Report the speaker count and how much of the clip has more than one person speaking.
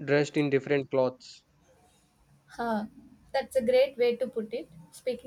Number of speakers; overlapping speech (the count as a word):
two, no overlap